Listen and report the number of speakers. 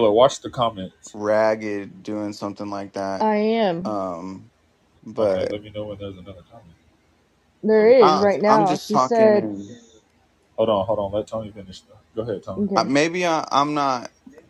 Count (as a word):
three